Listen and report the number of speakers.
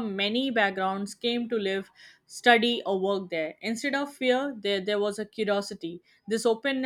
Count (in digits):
1